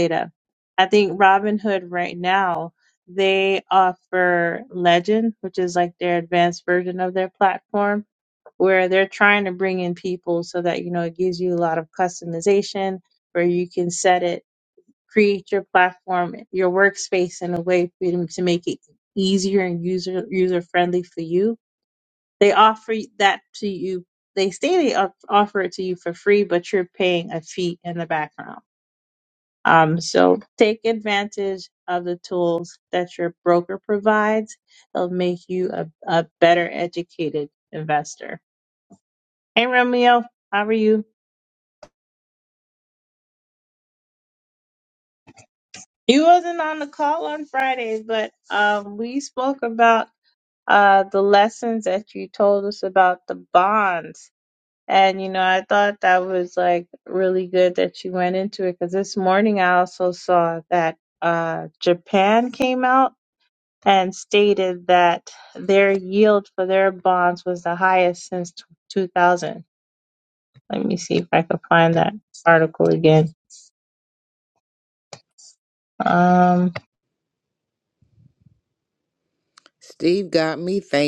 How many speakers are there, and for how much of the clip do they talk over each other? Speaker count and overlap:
two, no overlap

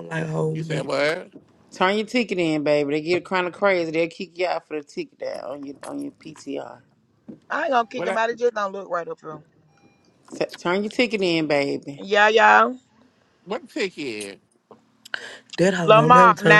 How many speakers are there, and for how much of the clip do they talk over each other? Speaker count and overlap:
four, about 9%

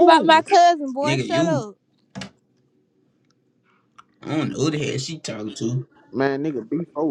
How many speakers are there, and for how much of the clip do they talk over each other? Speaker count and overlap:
three, about 16%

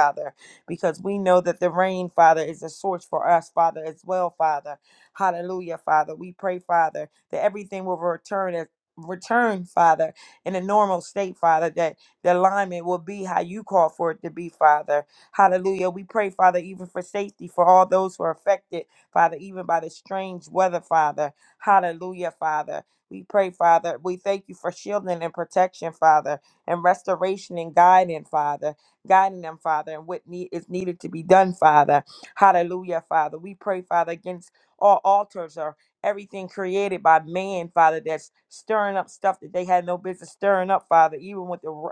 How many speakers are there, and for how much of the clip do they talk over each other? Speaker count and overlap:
one, no overlap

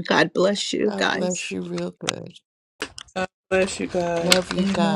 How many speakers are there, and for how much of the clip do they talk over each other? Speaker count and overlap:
three, about 25%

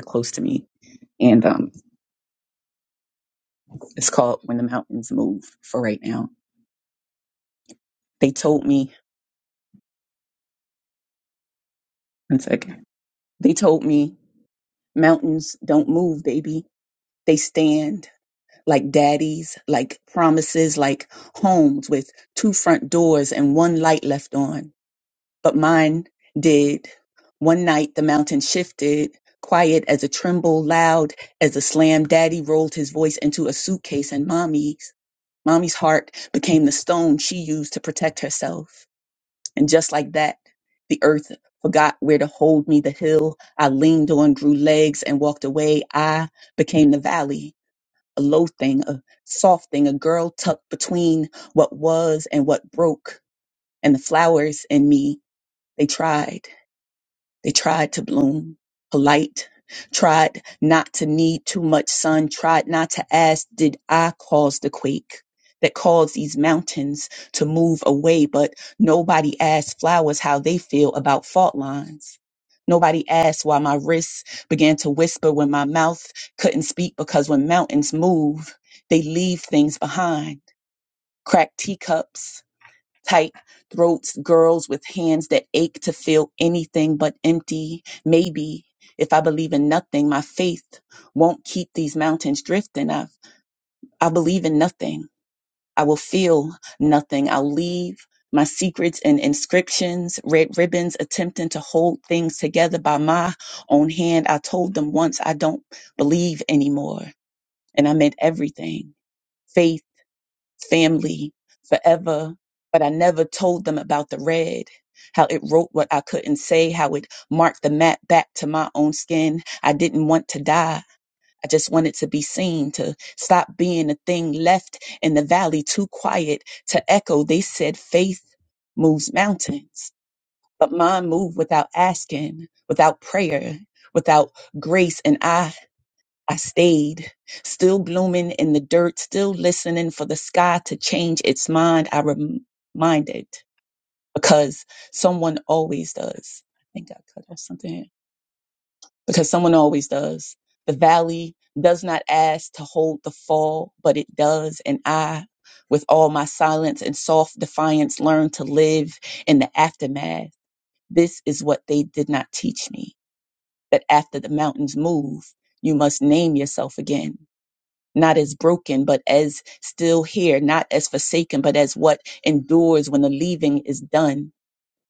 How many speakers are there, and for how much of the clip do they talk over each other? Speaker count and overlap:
one, no overlap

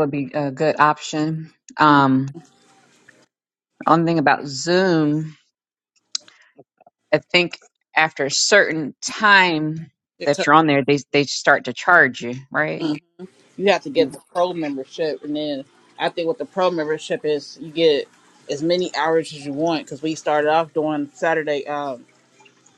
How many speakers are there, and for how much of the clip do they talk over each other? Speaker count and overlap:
two, about 2%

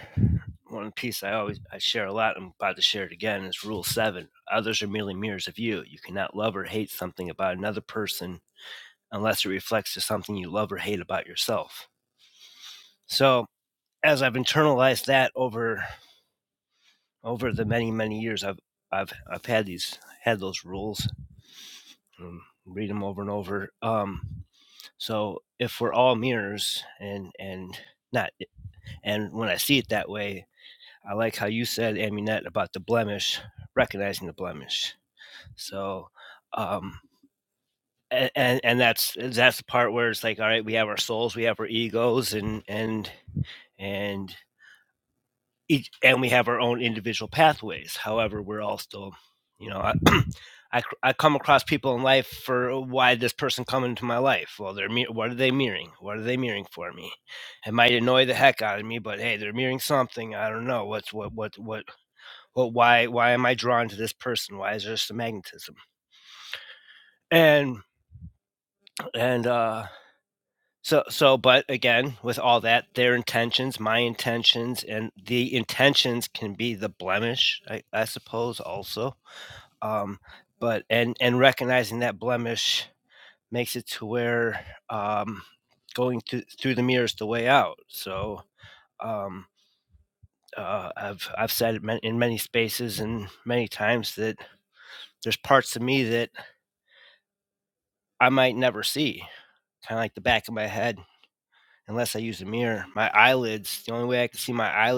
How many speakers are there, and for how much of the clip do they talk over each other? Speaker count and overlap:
one, no overlap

